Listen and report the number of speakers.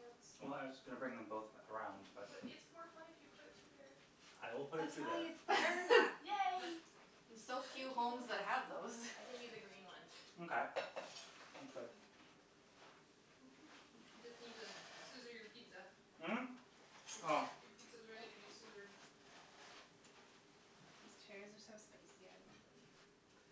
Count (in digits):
4